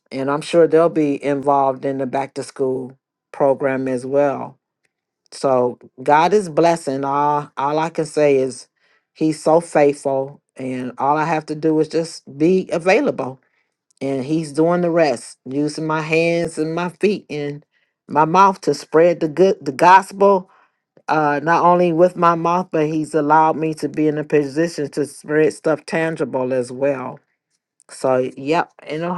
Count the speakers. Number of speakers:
one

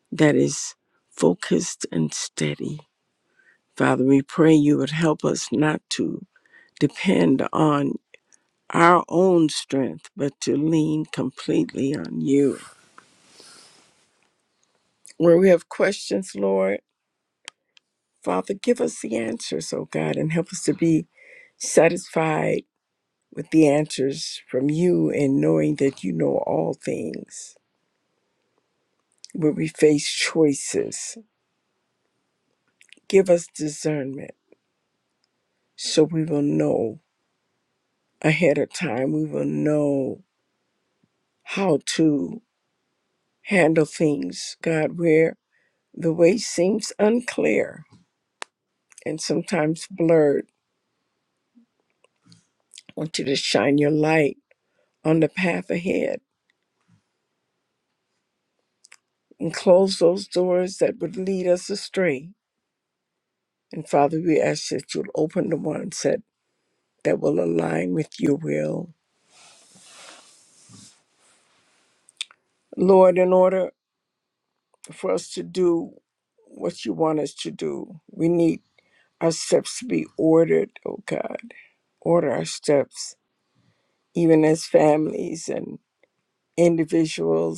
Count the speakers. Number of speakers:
one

